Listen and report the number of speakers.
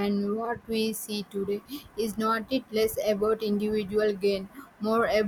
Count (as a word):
one